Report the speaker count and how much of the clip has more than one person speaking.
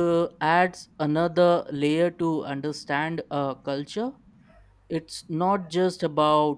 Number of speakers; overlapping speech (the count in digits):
1, no overlap